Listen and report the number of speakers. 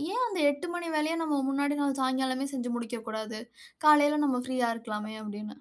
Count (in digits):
1